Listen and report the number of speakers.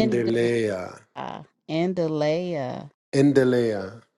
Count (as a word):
two